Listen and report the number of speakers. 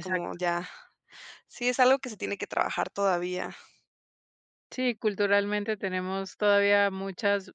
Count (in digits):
2